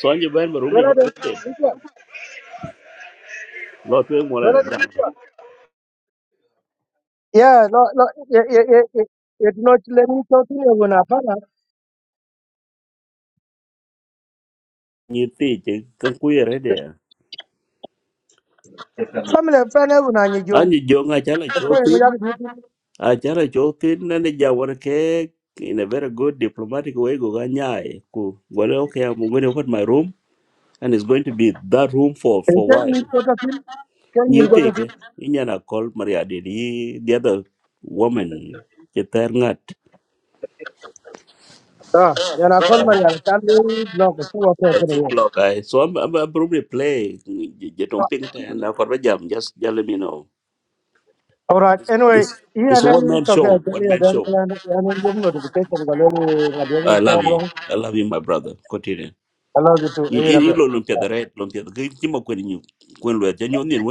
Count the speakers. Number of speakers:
two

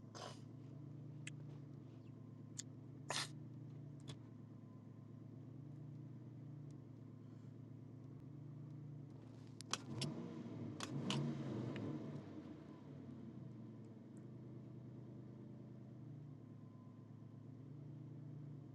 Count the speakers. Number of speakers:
zero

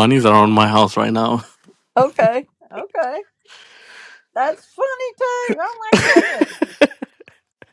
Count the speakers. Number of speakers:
two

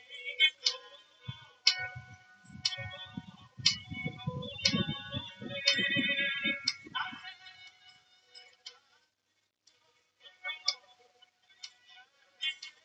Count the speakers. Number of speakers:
zero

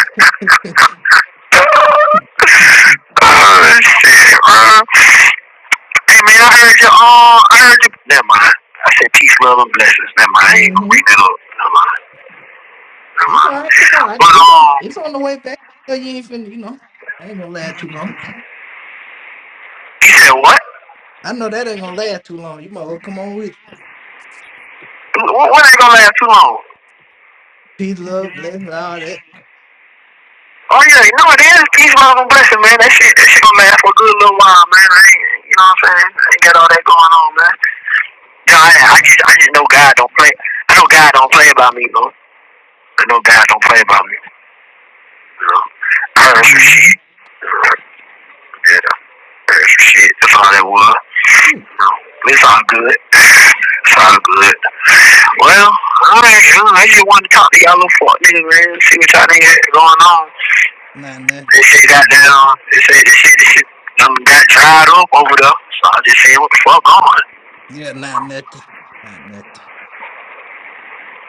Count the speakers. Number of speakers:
two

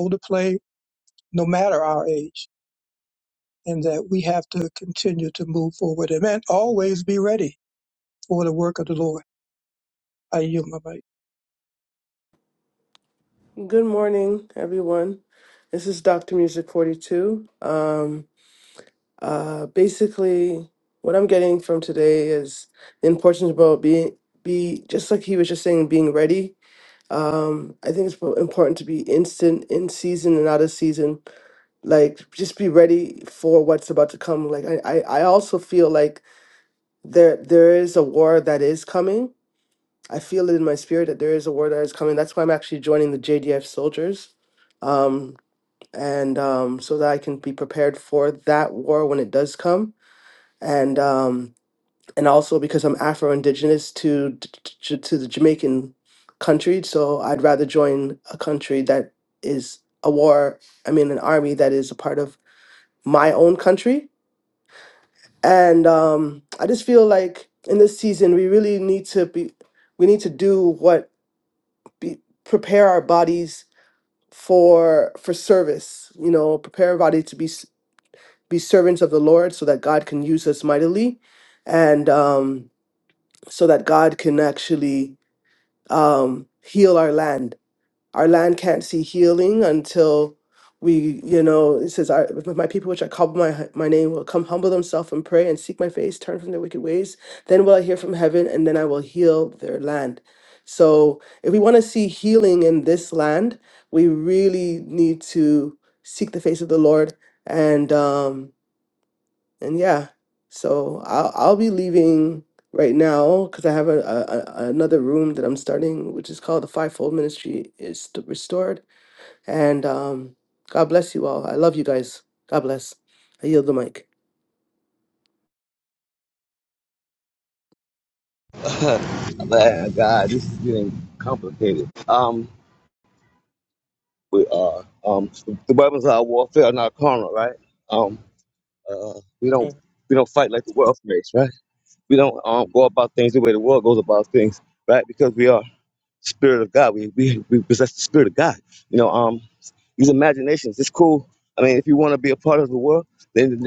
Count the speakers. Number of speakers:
three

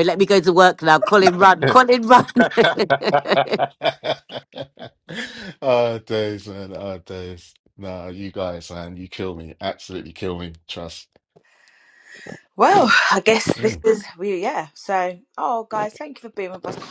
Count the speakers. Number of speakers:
three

